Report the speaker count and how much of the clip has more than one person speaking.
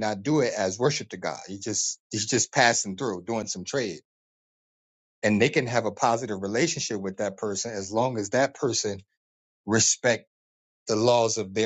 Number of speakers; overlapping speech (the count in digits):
1, no overlap